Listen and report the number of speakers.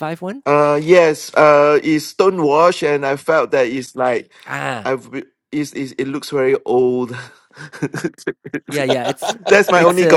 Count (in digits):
2